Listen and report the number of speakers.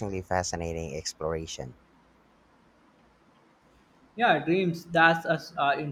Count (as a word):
two